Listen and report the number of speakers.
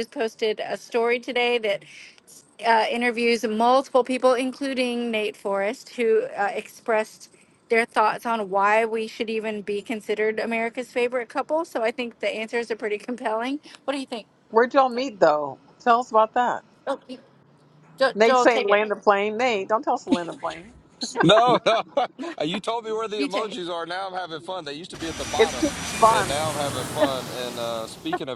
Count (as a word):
three